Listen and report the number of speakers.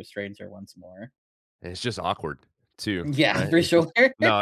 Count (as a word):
two